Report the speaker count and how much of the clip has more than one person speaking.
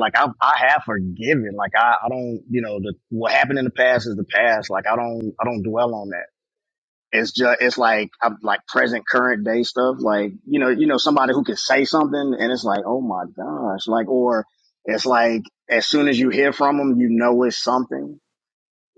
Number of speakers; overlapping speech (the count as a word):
one, no overlap